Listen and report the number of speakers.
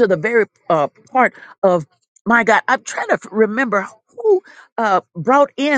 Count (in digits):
1